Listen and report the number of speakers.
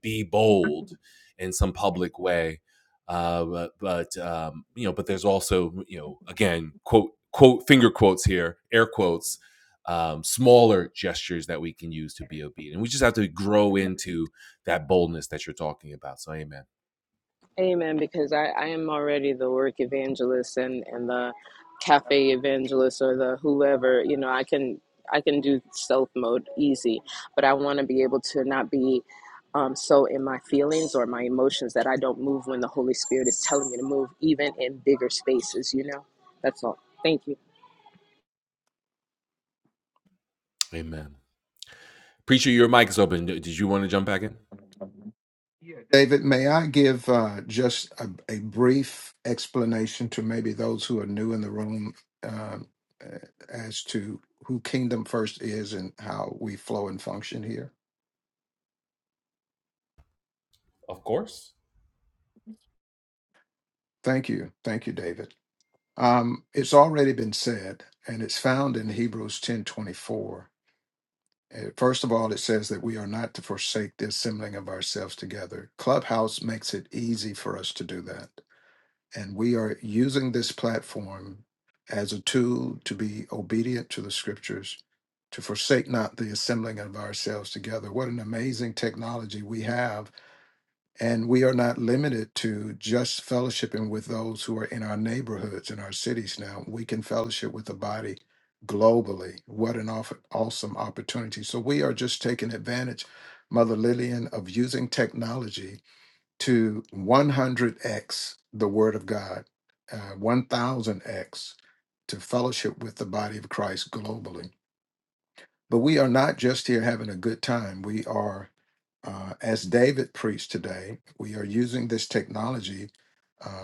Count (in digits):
3